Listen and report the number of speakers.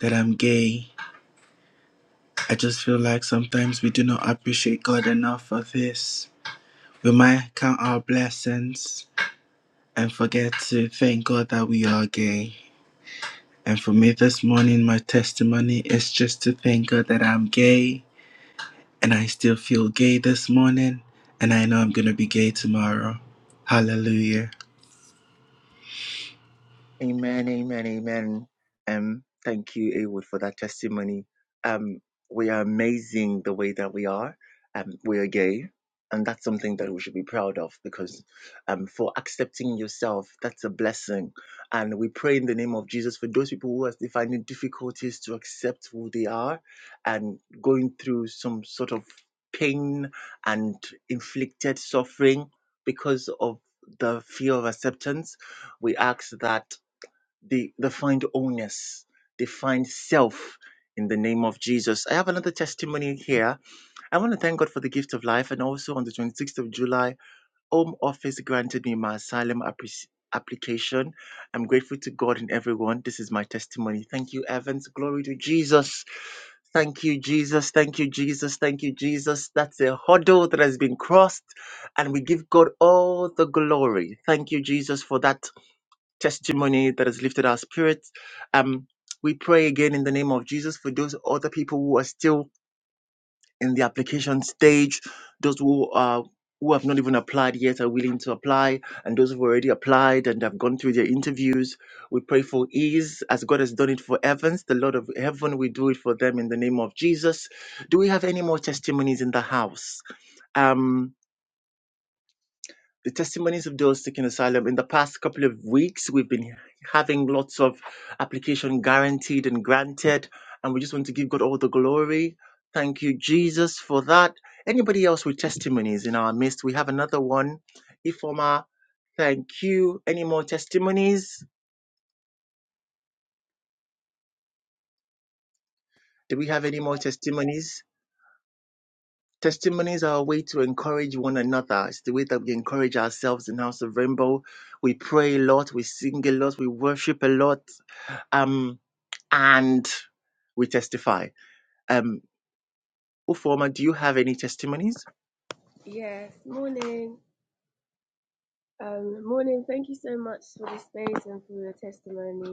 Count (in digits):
3